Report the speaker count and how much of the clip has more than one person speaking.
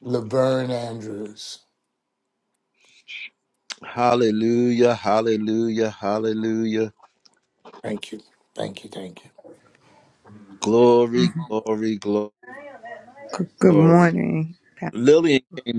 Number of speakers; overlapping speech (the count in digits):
3, about 3%